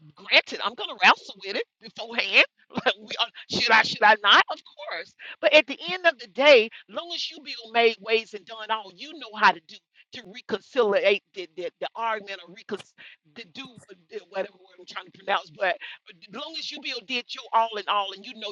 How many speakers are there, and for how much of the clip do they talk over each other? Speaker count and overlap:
1, no overlap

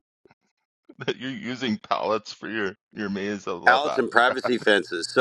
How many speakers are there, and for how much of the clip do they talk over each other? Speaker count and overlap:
2, about 16%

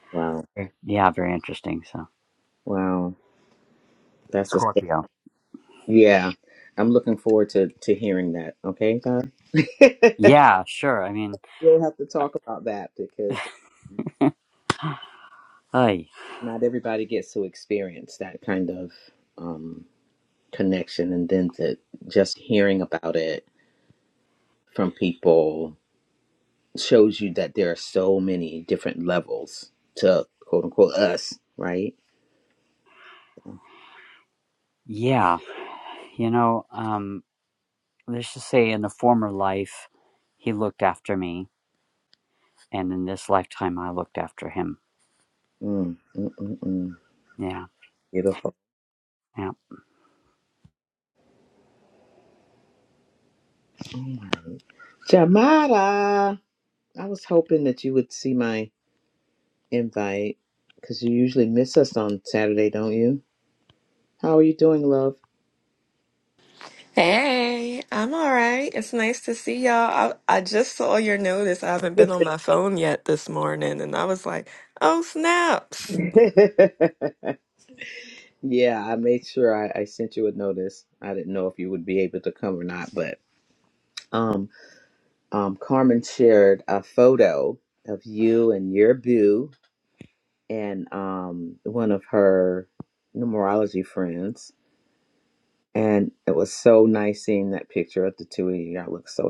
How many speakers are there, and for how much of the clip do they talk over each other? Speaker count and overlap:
3, under 1%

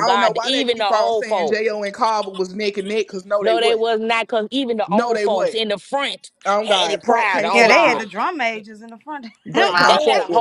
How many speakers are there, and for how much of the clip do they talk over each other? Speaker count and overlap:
3, about 47%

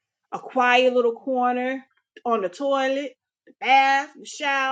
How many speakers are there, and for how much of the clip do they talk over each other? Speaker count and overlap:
1, no overlap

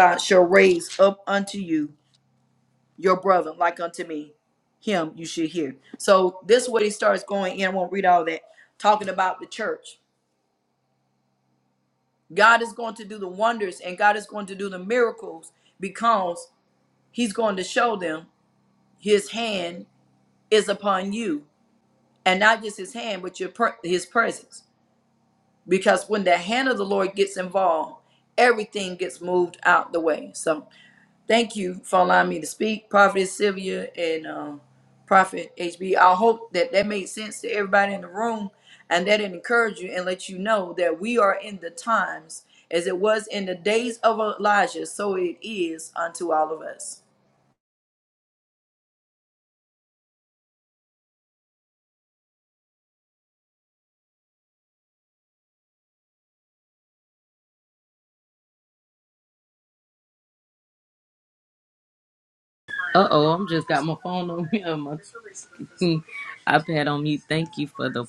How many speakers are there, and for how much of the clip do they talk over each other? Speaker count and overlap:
2, no overlap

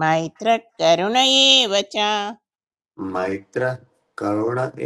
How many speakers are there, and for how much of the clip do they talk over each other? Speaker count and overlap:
2, no overlap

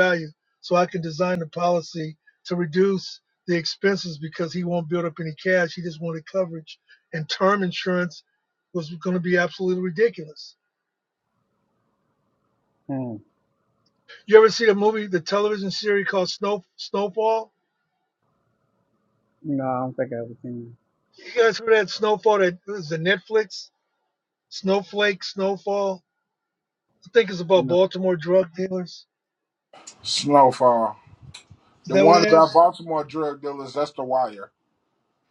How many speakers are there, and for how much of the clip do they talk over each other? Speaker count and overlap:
3, about 2%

